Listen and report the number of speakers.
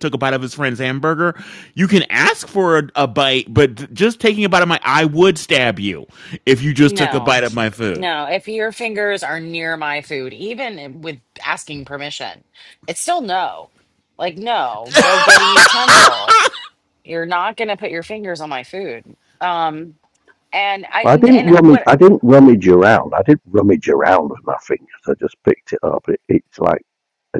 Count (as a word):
three